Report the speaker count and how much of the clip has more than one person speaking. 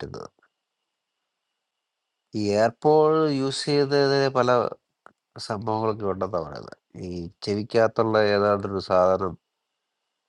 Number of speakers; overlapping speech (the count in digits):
1, no overlap